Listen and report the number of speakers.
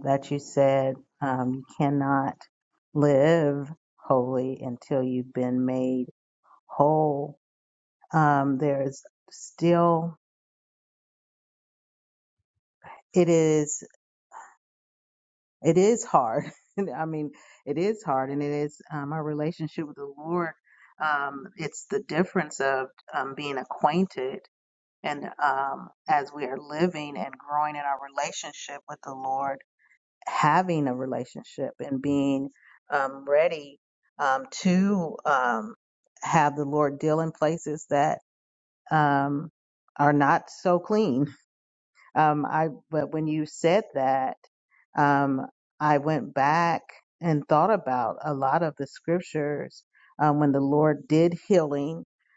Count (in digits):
1